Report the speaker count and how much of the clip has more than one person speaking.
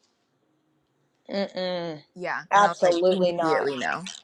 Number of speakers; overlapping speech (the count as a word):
two, about 29%